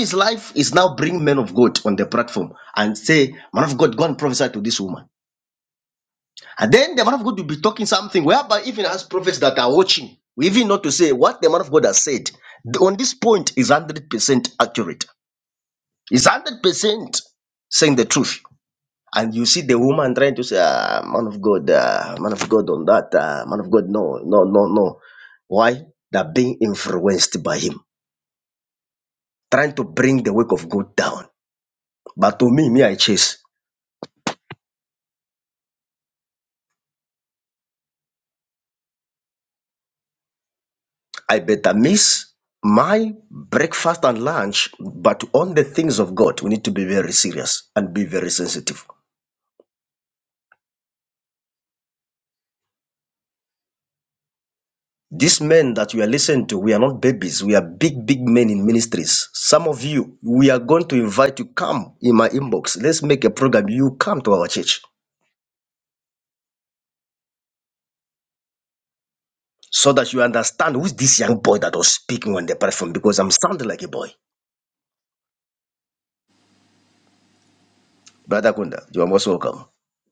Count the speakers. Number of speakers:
one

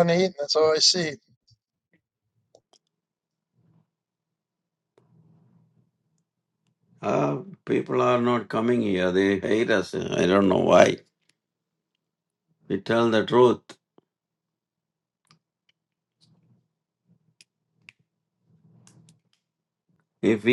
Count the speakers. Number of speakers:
two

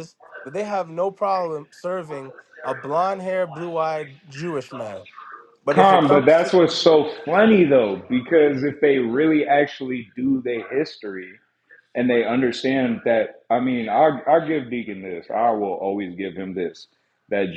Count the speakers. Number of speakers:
two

